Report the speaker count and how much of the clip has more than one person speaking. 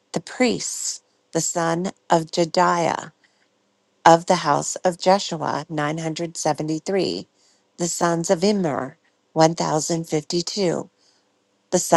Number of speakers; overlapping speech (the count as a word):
one, no overlap